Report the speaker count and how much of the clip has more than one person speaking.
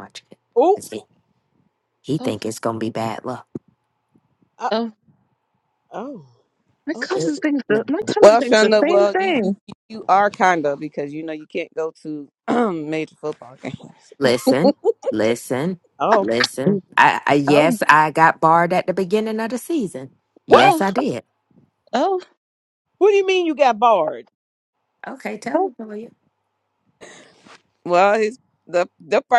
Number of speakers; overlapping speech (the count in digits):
4, about 9%